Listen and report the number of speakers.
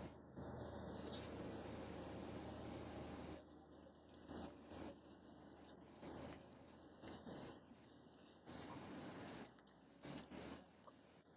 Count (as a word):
zero